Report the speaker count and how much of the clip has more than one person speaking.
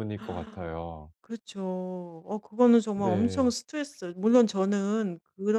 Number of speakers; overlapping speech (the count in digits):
2, about 9%